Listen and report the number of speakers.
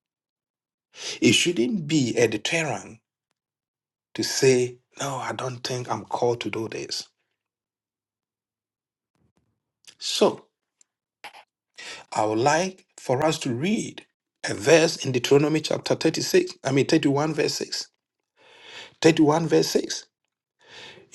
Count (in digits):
1